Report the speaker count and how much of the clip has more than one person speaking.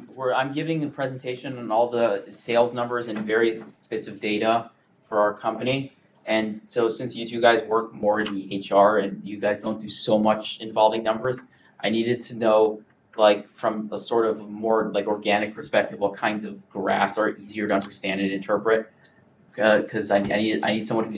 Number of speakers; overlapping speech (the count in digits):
1, no overlap